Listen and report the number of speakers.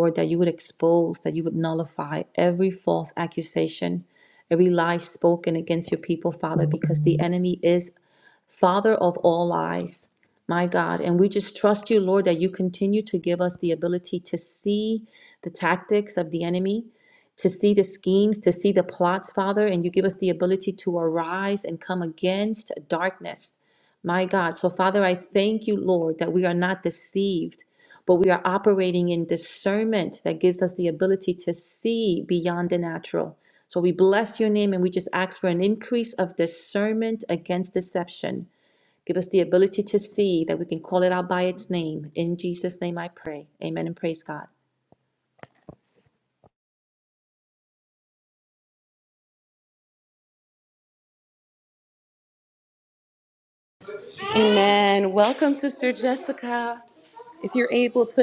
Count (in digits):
2